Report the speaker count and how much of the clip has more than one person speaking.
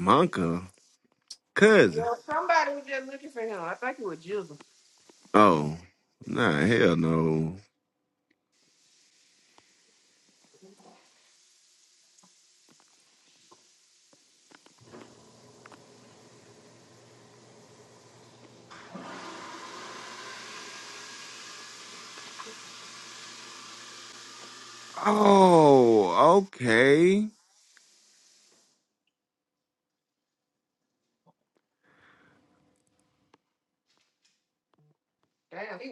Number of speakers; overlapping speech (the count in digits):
2, under 1%